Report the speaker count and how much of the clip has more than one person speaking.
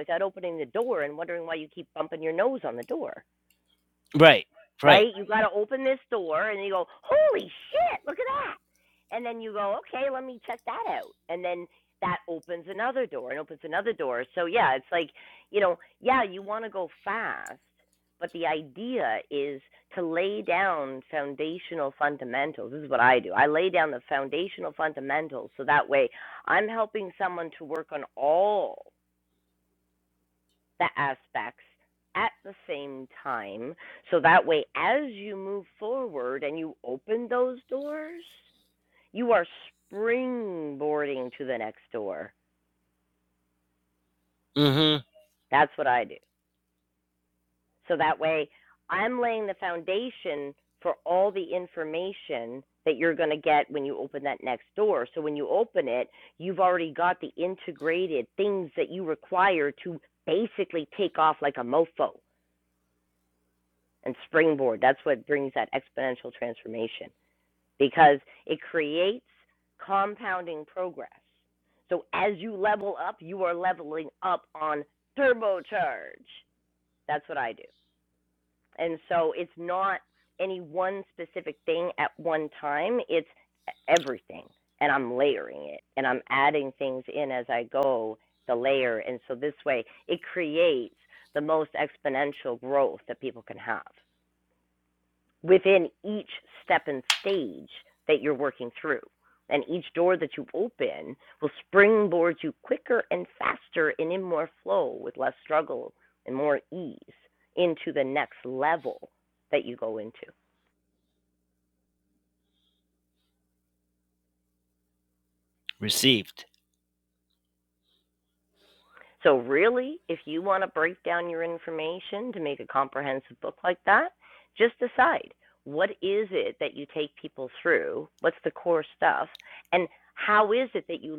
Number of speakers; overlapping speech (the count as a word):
two, under 1%